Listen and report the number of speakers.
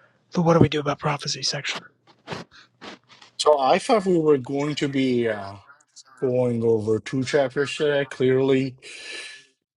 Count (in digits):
2